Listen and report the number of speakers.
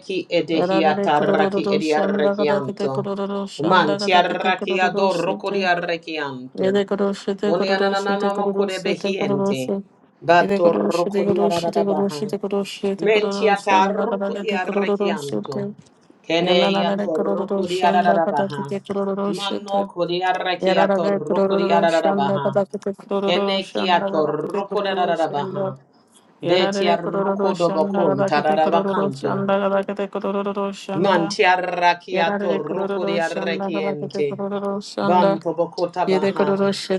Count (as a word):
two